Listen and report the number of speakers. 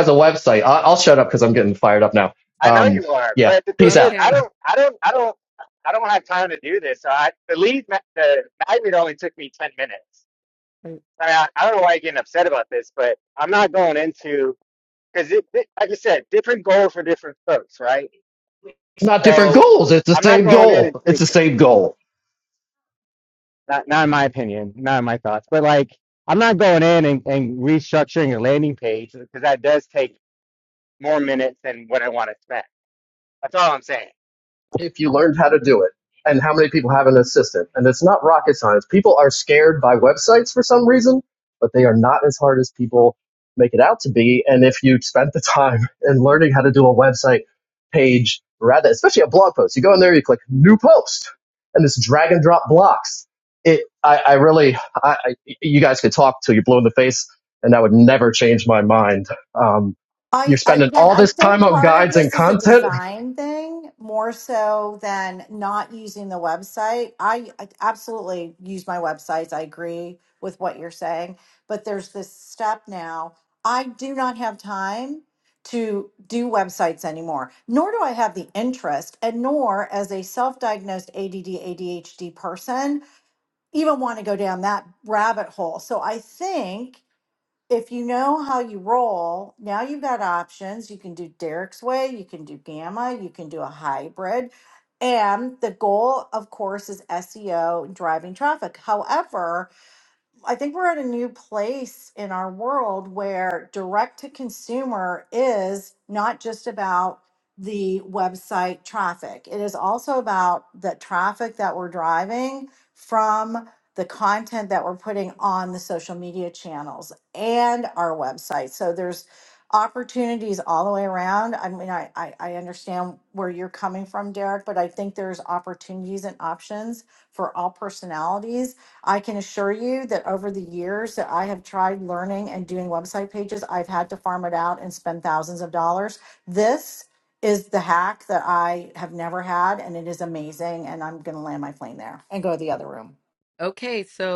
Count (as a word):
four